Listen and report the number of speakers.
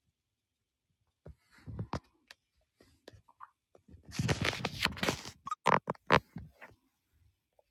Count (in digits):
0